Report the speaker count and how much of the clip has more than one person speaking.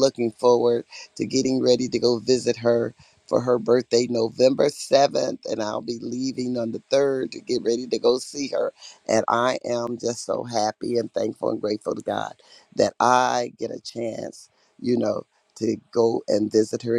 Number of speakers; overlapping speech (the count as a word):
one, no overlap